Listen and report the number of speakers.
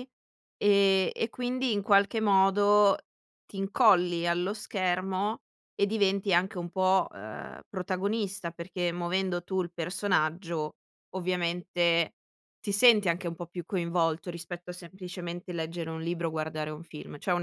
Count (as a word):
one